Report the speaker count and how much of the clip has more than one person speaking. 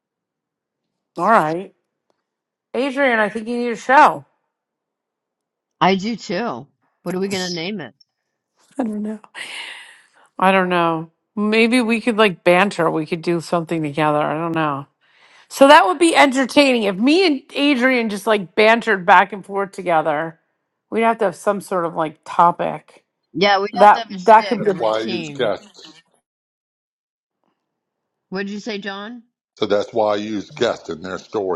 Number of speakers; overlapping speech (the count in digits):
3, about 6%